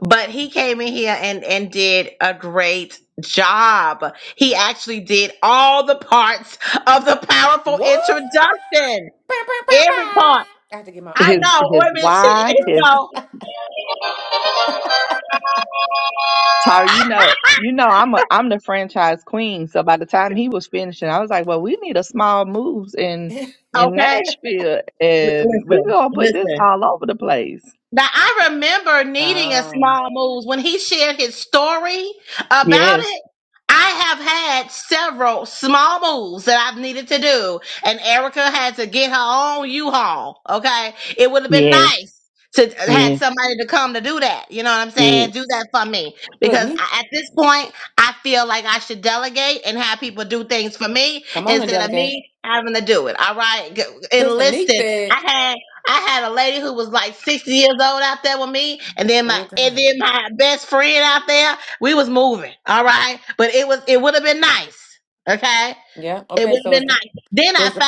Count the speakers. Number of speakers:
3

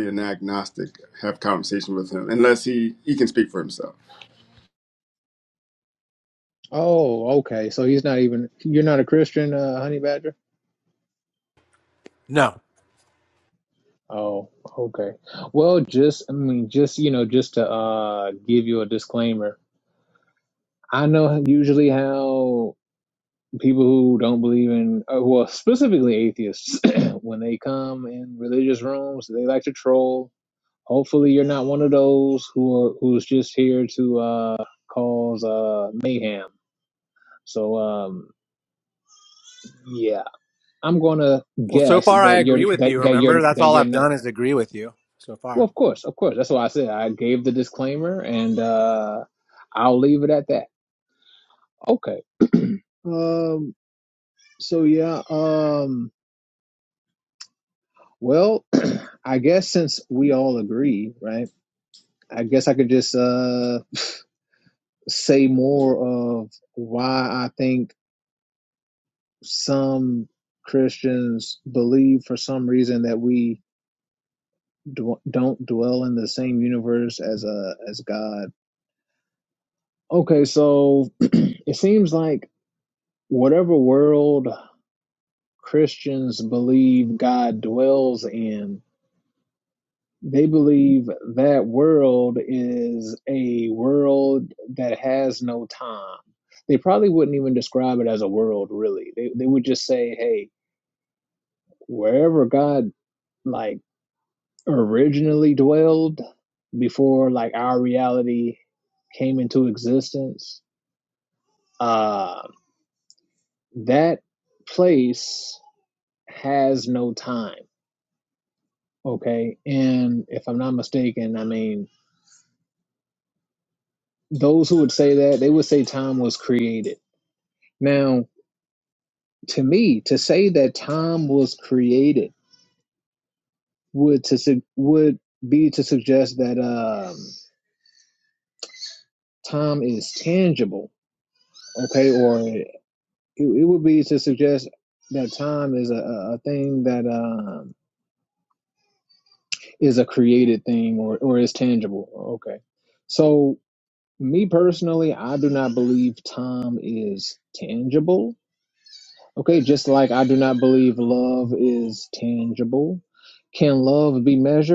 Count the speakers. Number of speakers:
3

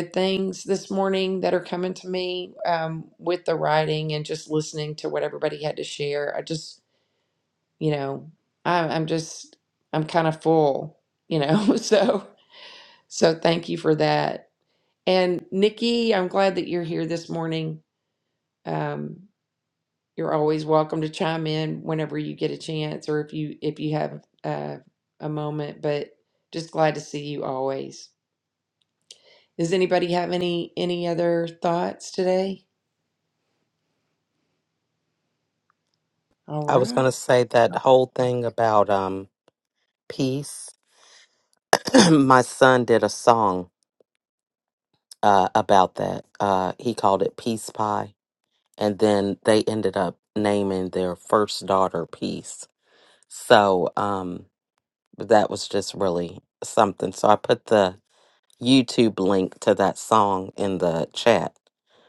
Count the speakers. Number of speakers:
2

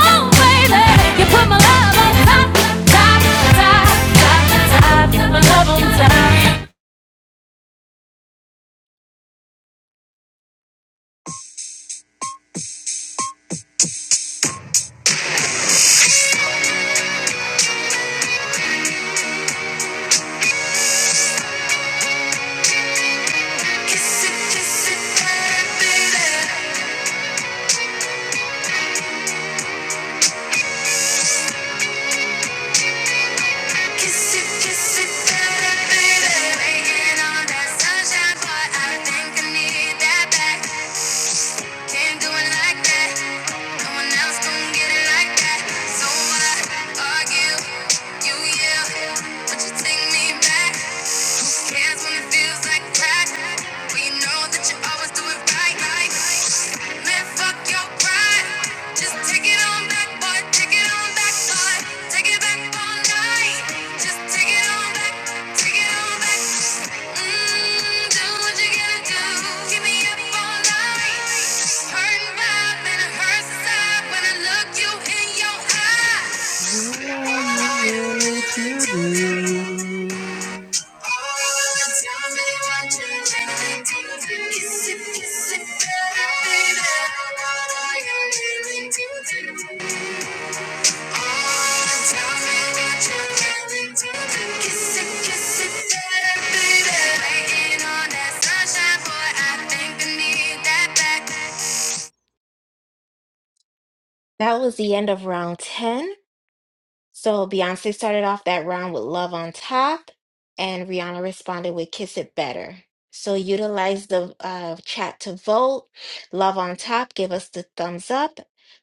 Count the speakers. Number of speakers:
3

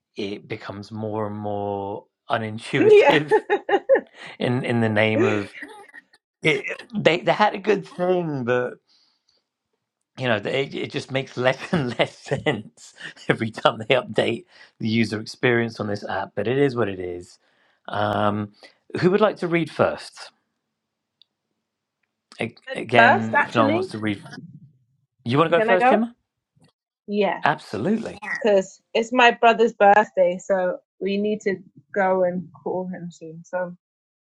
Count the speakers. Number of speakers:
2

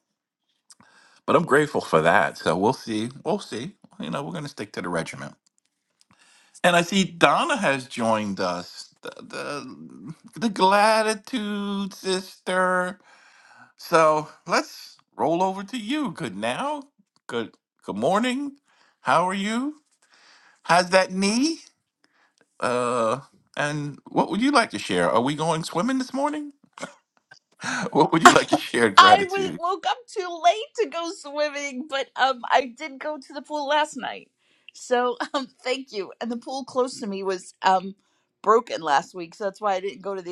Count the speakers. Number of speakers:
2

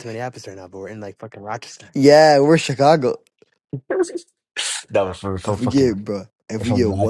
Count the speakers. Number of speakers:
3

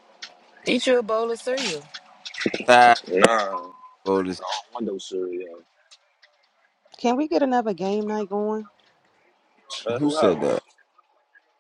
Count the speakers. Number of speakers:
4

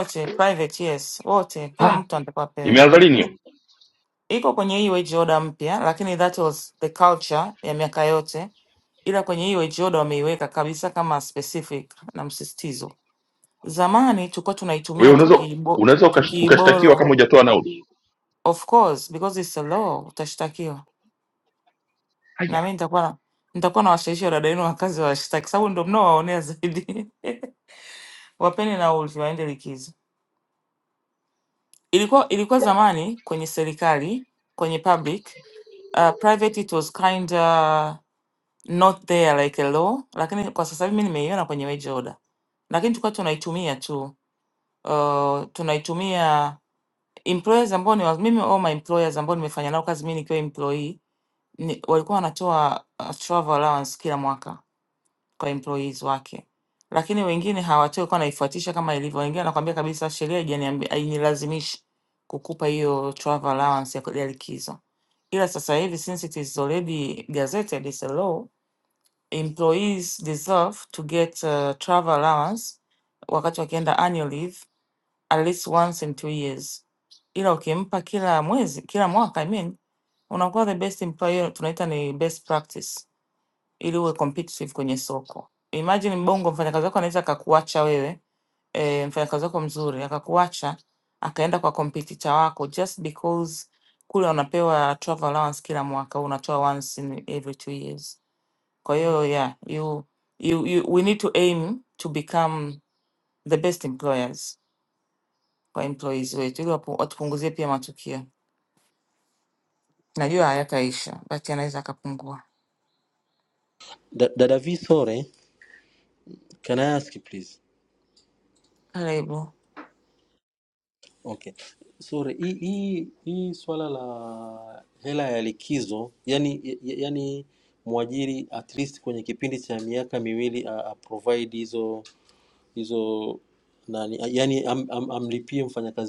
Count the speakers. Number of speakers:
3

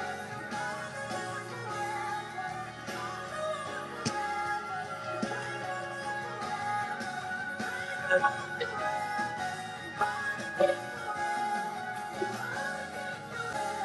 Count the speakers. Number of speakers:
0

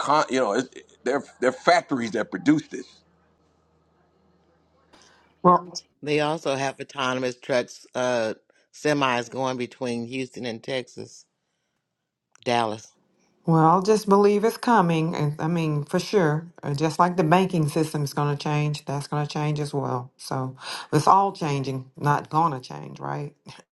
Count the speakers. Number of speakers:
3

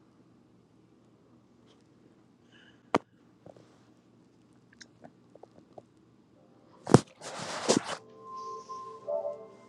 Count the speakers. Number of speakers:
0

